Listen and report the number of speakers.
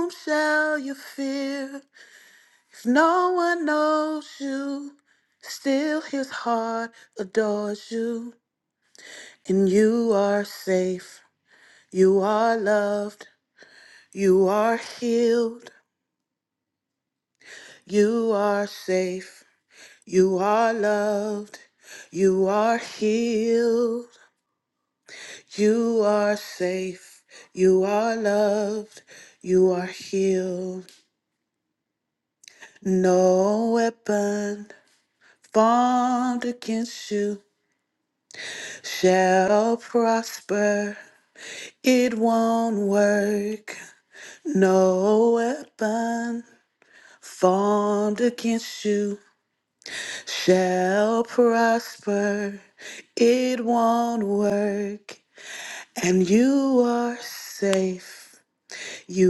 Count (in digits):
1